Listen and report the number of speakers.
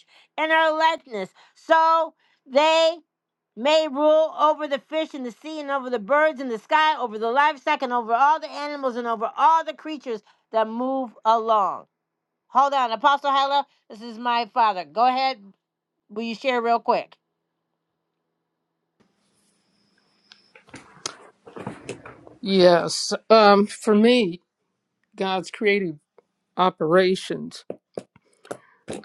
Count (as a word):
two